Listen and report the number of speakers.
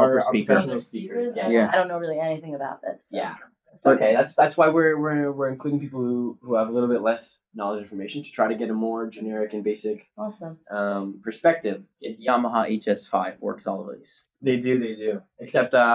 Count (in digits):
3